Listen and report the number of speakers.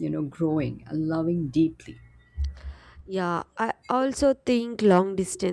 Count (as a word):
two